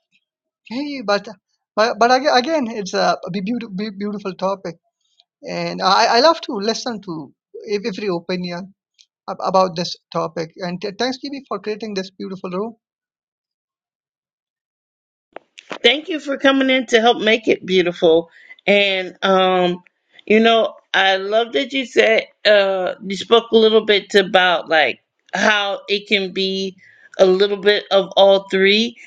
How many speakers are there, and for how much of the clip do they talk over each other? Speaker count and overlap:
2, no overlap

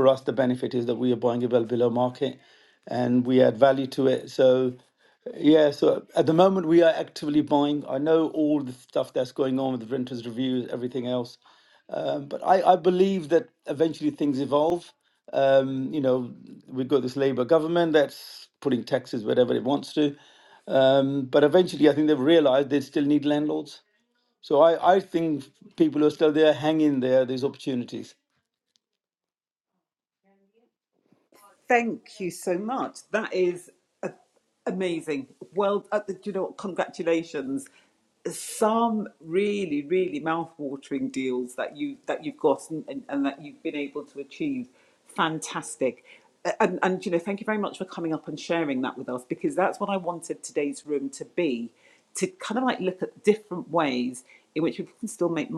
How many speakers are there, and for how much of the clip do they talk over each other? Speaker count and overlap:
2, no overlap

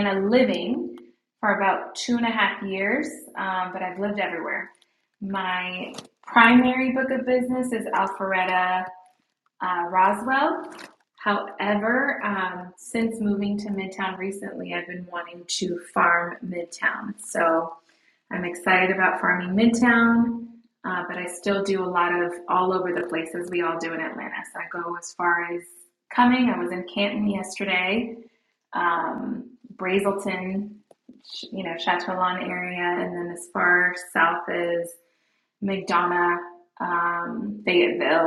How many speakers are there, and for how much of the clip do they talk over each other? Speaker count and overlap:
1, no overlap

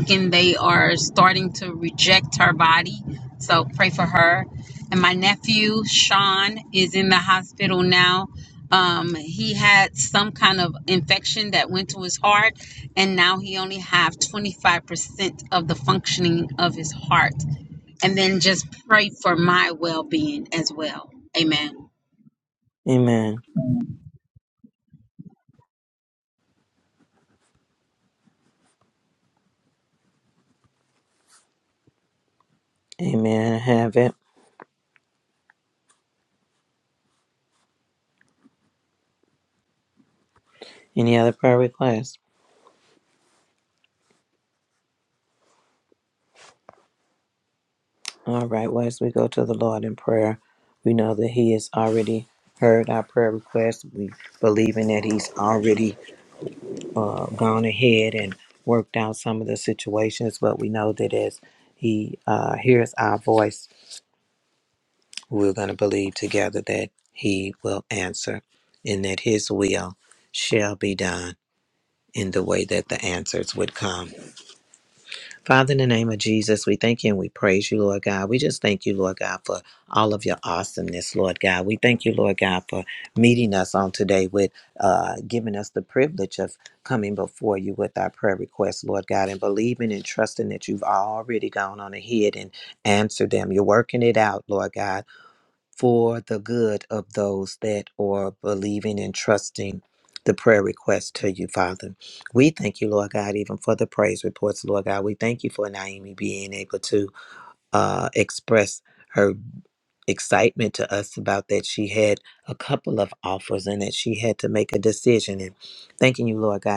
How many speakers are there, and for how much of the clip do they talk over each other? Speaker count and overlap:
2, no overlap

